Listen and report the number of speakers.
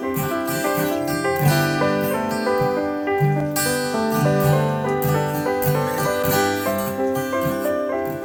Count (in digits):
0